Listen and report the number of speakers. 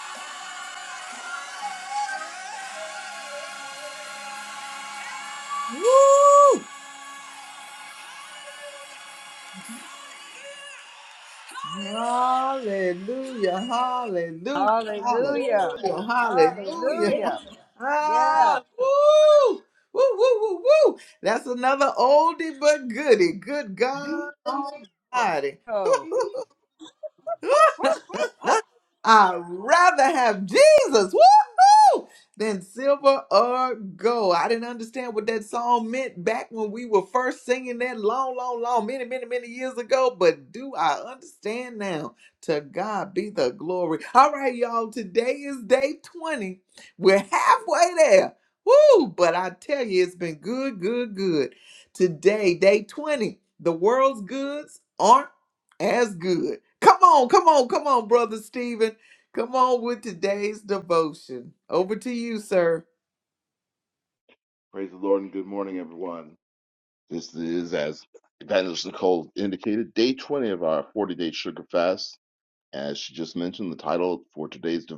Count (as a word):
three